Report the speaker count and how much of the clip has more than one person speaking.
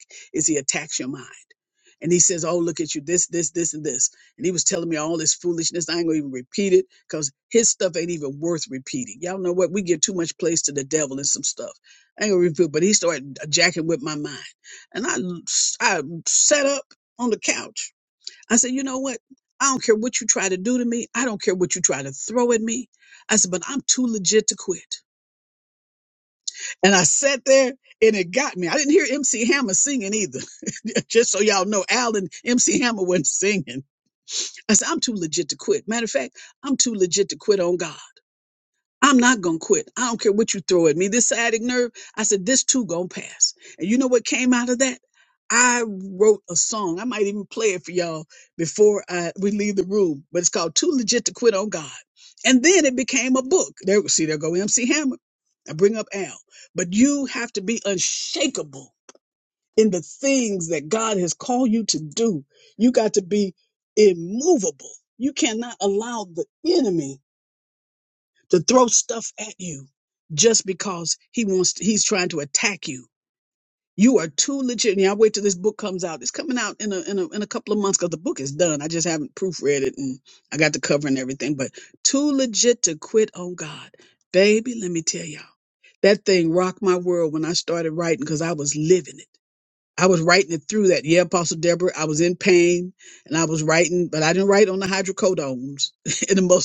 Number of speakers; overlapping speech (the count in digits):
1, no overlap